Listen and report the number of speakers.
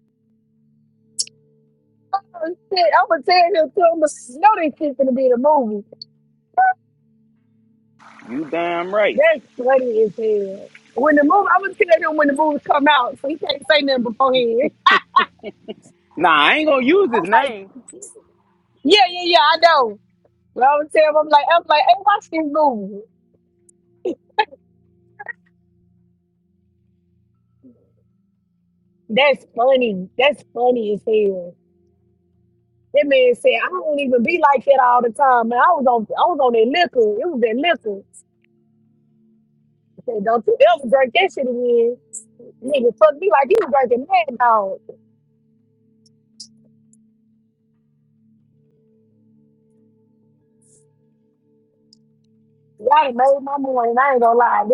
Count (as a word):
two